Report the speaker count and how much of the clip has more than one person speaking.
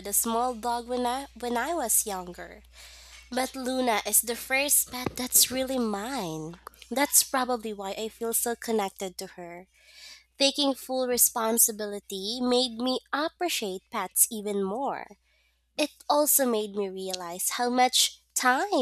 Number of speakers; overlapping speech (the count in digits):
1, no overlap